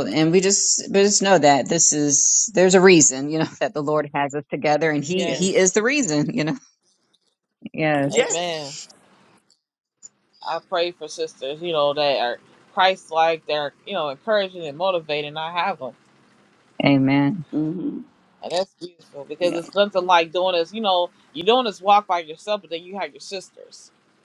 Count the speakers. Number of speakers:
3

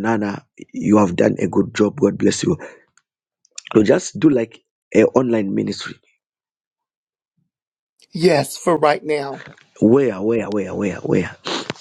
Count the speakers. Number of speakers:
2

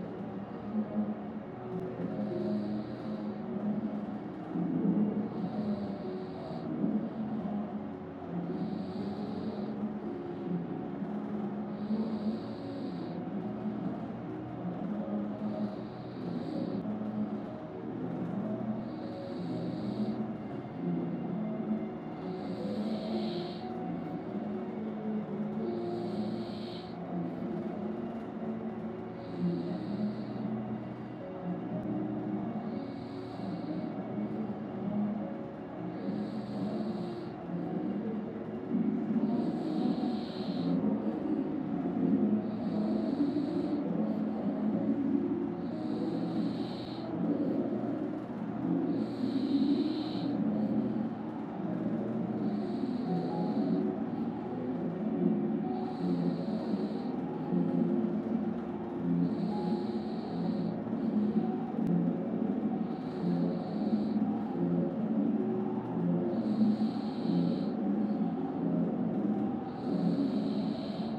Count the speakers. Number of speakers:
0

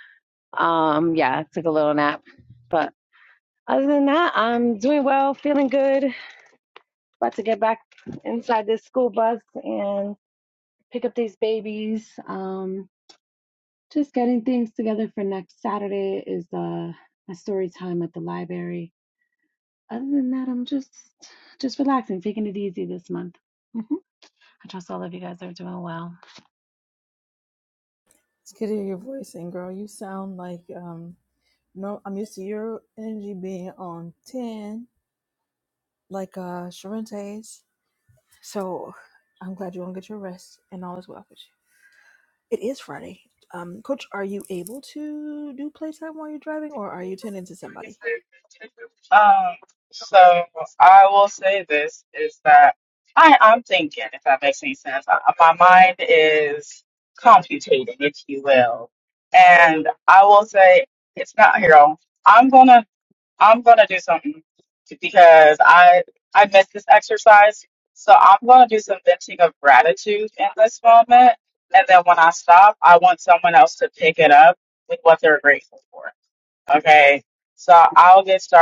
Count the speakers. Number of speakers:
3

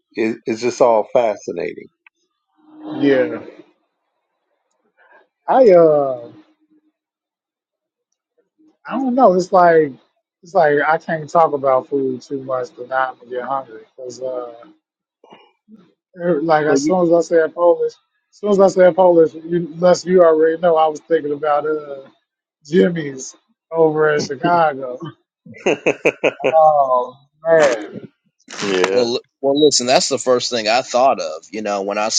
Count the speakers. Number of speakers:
3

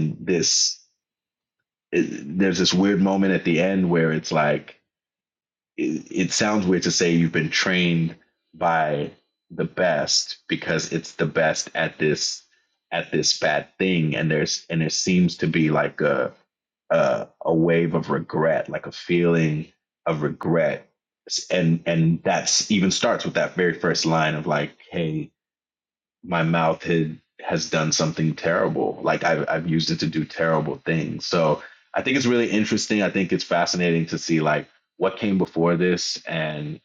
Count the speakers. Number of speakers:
1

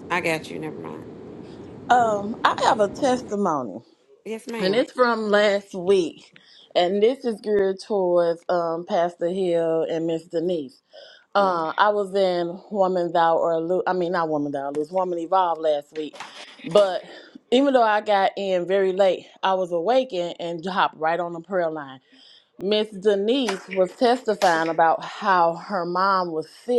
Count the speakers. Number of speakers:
2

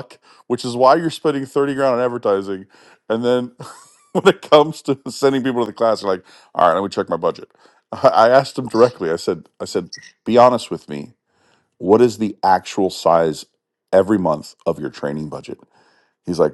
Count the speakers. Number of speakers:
1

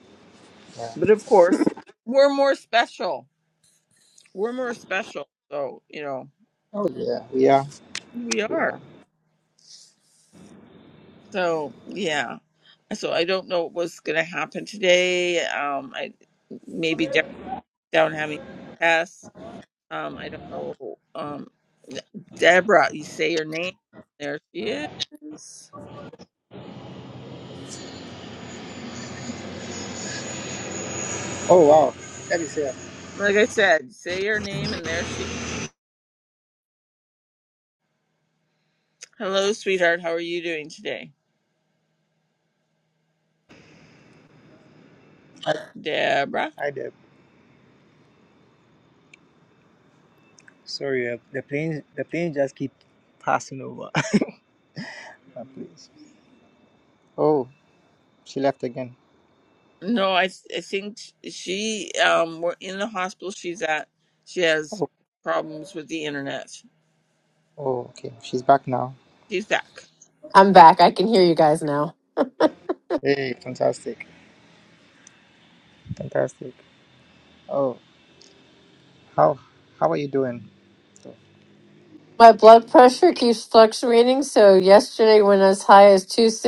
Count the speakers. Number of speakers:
3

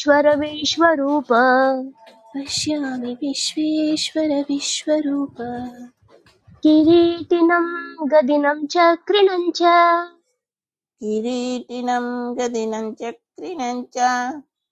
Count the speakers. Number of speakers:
3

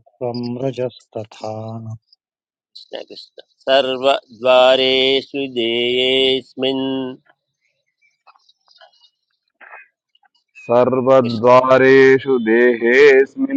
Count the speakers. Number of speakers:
3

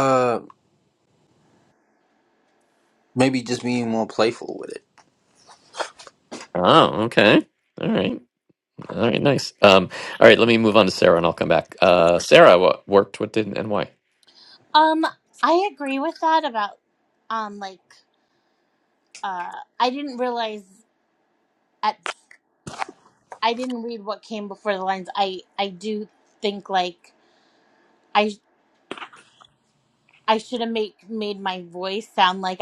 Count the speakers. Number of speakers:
3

